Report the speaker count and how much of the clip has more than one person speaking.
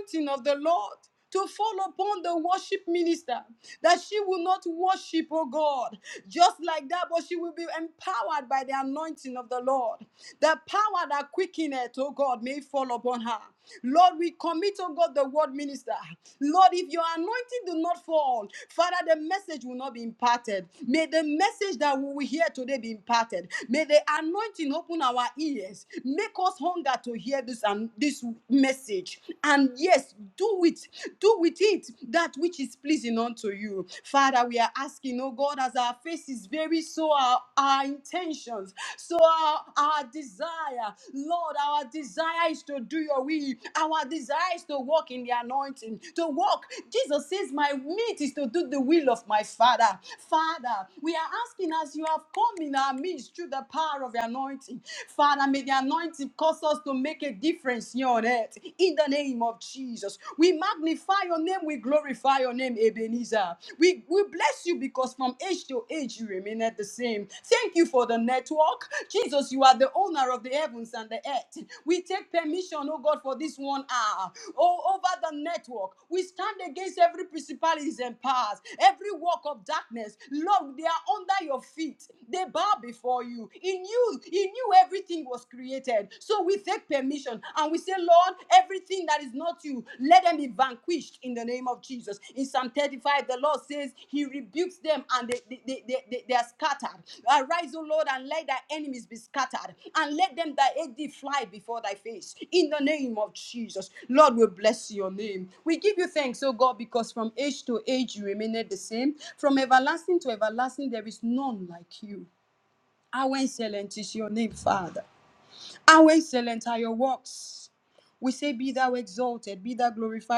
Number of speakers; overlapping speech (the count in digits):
1, no overlap